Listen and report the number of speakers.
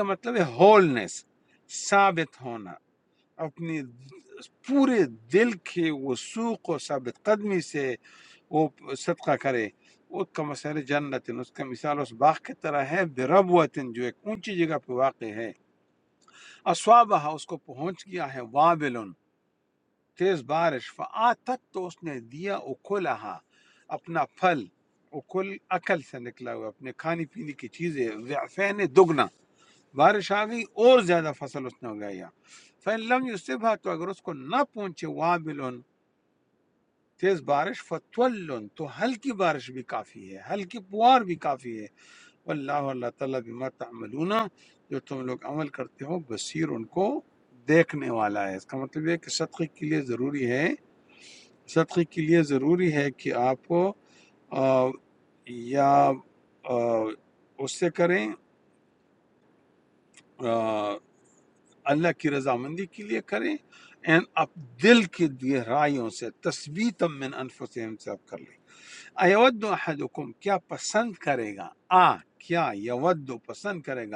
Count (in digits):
1